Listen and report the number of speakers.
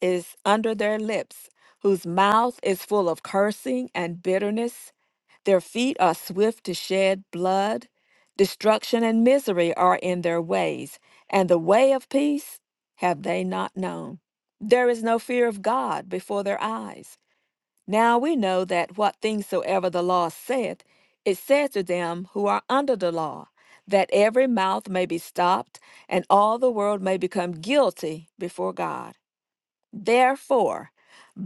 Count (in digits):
1